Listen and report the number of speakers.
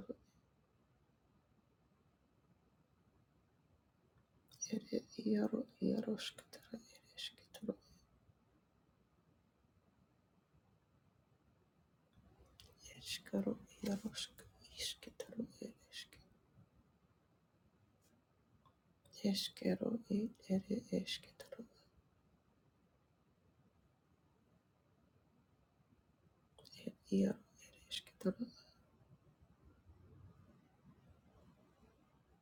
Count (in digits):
1